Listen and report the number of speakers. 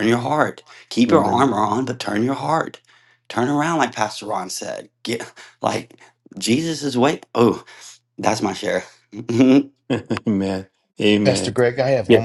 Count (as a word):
three